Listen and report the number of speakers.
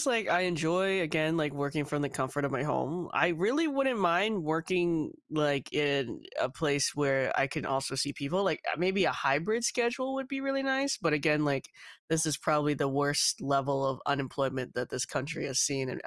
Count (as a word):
one